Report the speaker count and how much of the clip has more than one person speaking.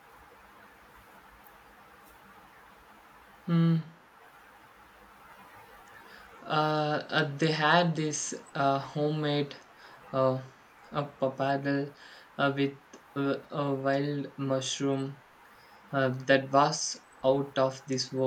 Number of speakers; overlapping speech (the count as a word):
one, no overlap